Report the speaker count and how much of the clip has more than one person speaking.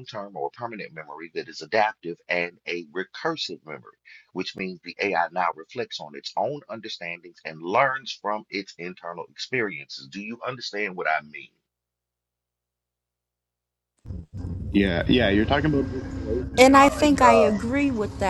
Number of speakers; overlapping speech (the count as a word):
three, about 5%